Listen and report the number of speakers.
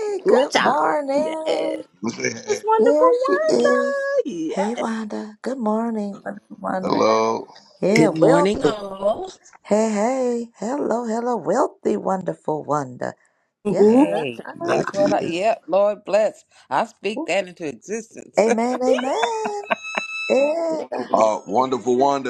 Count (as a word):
four